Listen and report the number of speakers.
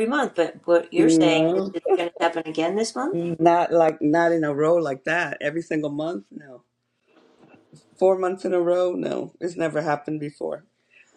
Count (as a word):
two